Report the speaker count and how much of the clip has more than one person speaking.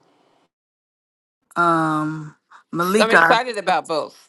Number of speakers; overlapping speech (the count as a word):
two, about 15%